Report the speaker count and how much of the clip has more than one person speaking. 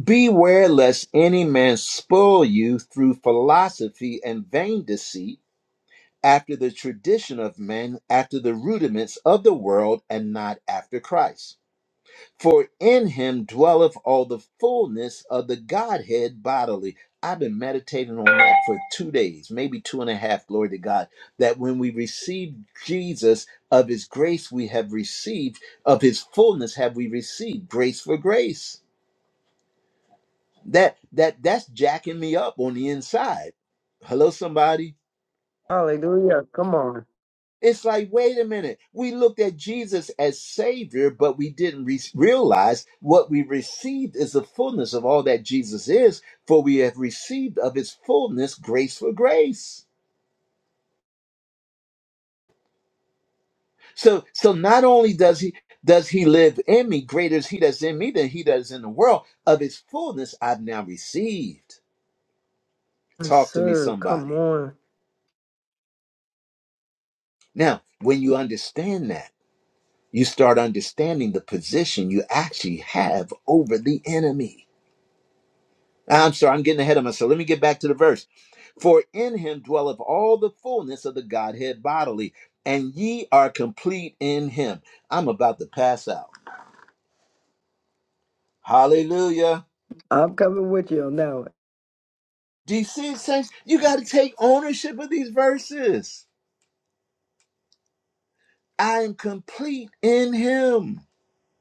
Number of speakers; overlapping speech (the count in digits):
2, about 1%